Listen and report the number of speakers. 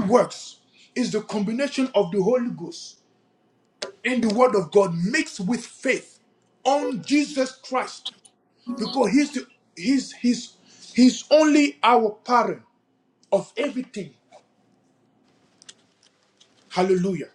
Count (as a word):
one